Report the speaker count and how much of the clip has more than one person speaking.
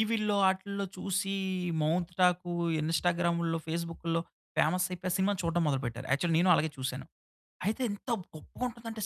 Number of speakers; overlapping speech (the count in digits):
1, no overlap